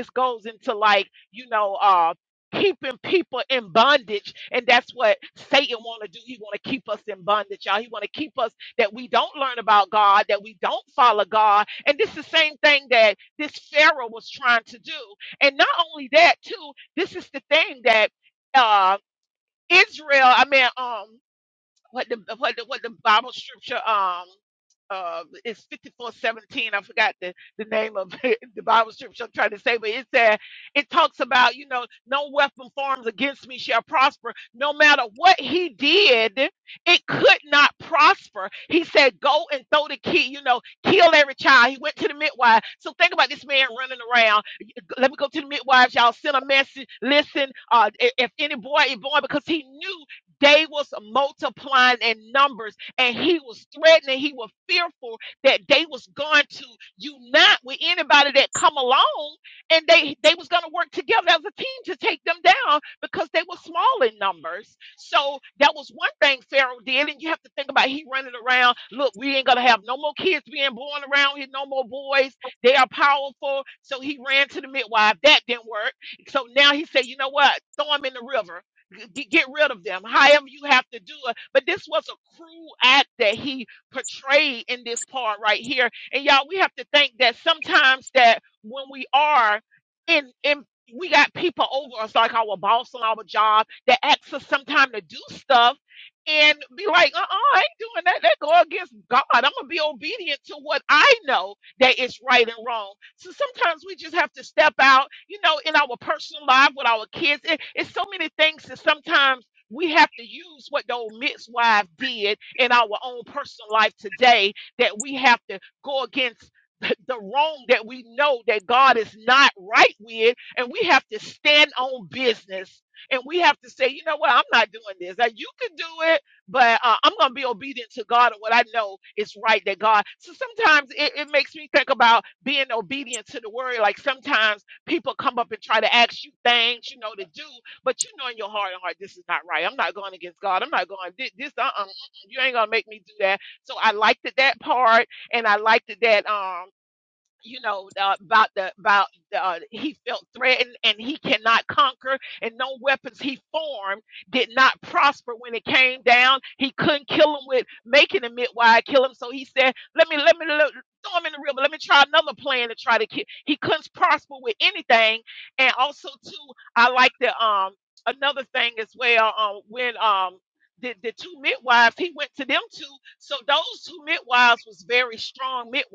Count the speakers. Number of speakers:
1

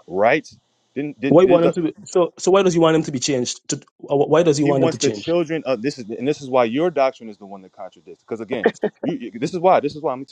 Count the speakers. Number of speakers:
2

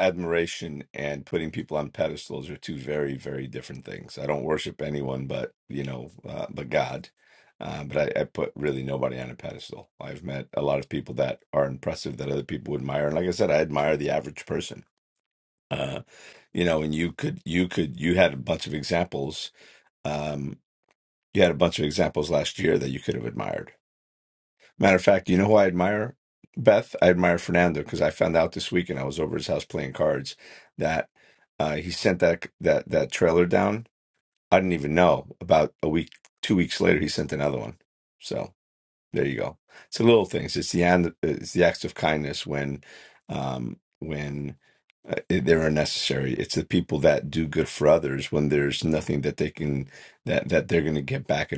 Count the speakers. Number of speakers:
1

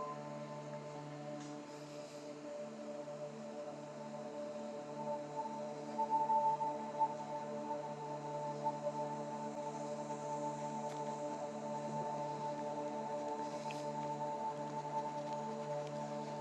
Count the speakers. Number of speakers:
0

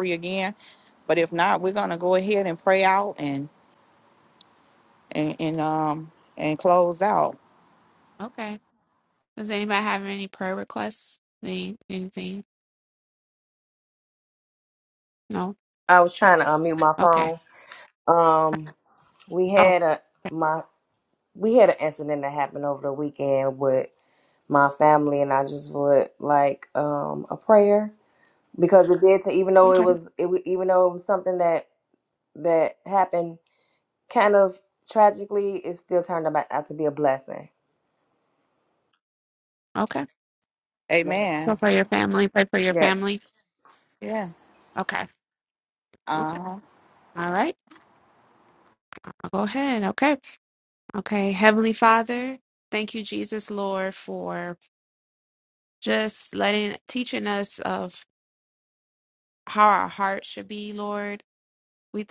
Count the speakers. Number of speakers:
3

